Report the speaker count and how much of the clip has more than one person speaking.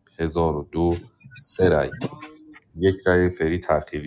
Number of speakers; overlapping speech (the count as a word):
one, no overlap